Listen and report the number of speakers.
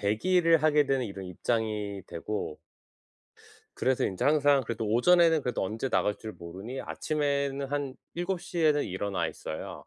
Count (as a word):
one